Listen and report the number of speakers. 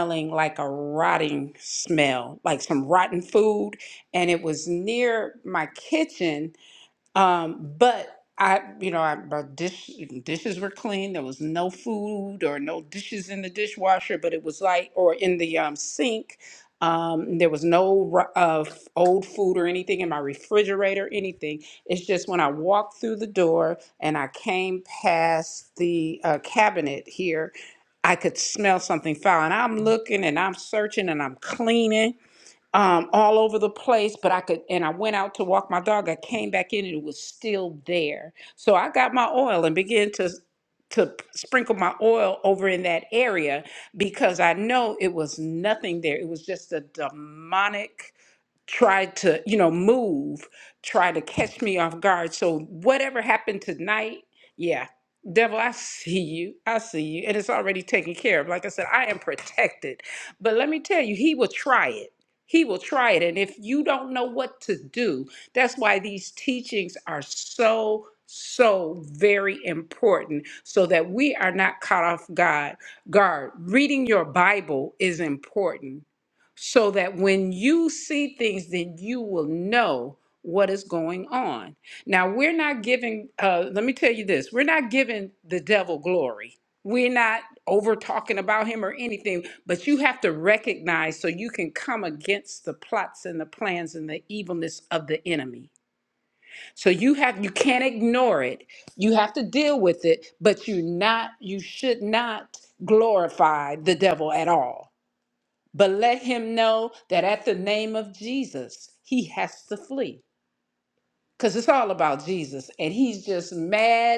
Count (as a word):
one